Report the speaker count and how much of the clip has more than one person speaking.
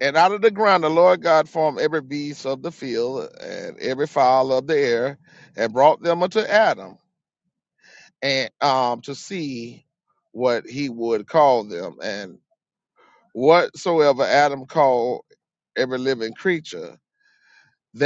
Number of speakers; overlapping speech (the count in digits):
1, no overlap